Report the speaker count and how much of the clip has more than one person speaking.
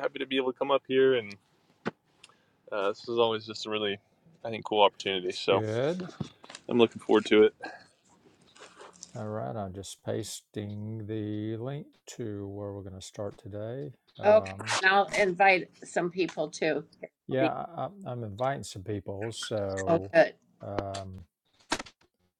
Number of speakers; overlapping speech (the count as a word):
three, about 4%